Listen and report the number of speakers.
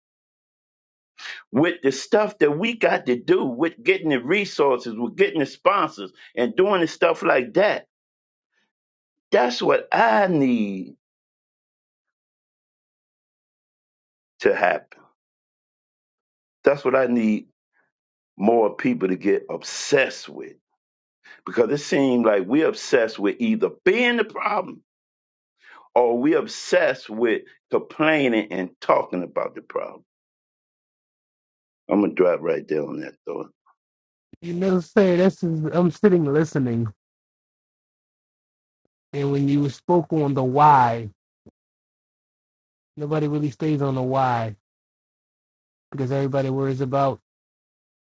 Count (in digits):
2